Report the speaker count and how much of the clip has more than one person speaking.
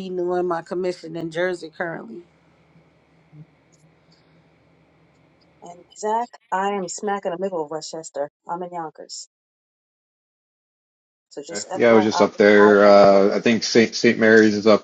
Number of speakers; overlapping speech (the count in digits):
3, about 9%